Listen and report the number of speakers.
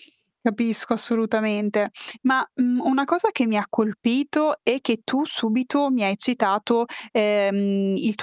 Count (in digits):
1